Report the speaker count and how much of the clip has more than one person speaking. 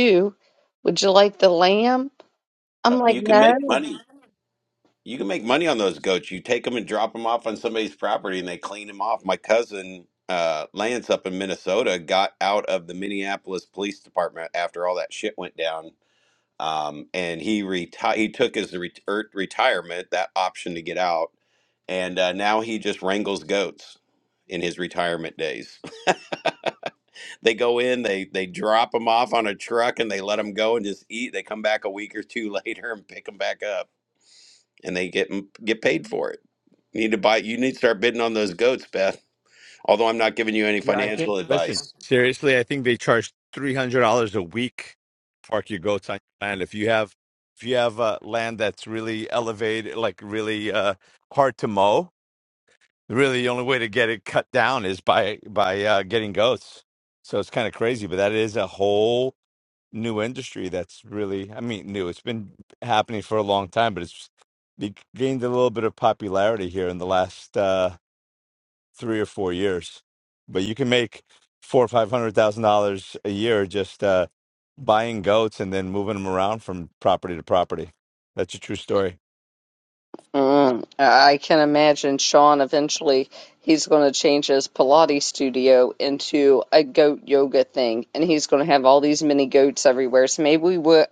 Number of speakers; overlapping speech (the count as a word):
three, about 2%